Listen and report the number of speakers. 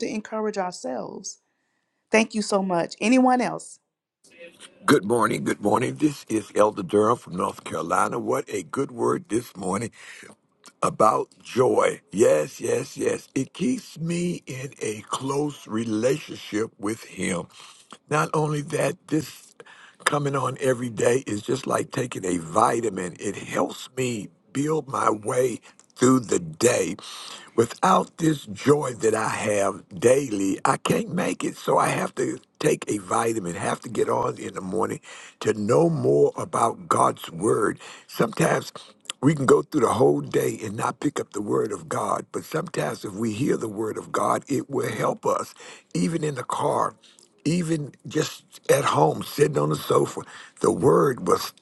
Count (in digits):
2